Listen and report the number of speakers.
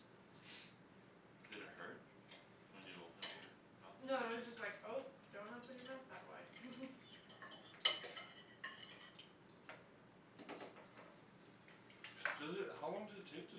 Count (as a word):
three